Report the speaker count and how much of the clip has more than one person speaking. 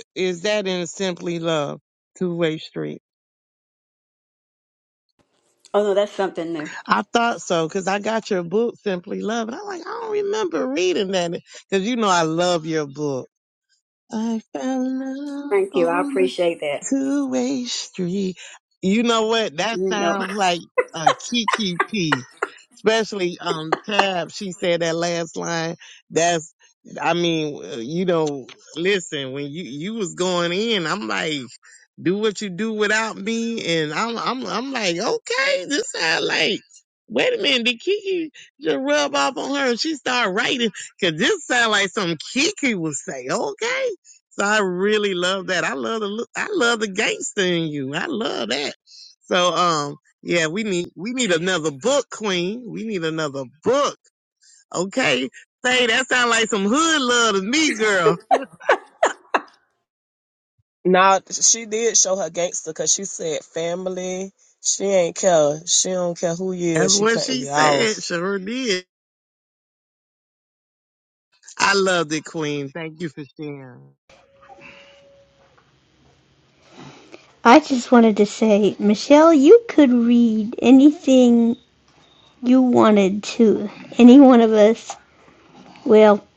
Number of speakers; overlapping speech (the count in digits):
4, about 3%